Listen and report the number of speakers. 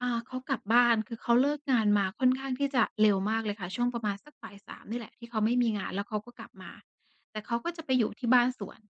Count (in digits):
1